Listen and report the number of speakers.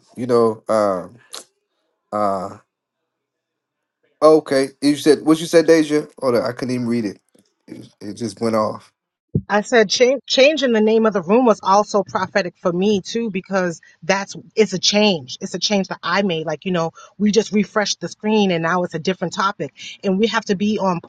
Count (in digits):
2